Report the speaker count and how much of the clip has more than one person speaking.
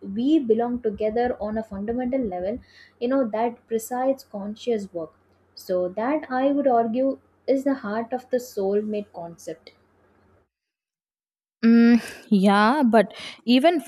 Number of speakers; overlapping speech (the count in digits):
2, no overlap